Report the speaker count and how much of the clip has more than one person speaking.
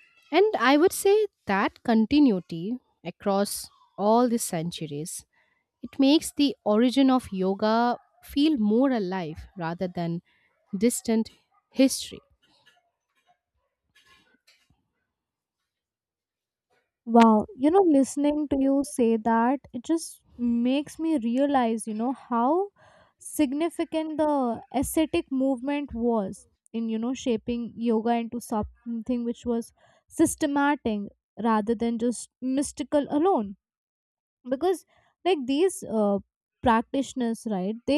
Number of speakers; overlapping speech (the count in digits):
2, no overlap